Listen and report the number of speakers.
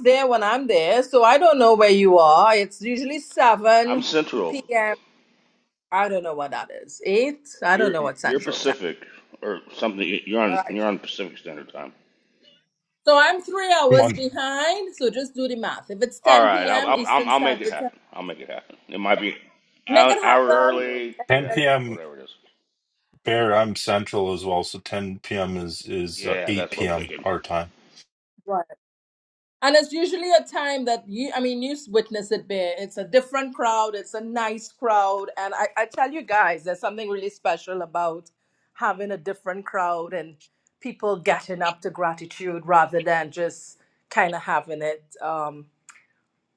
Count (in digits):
3